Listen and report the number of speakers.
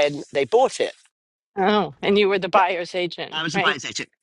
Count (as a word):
two